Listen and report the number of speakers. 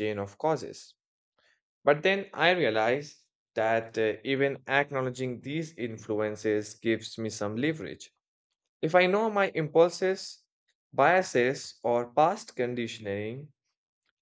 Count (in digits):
1